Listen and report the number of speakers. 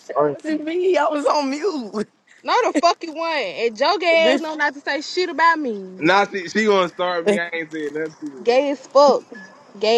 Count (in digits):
3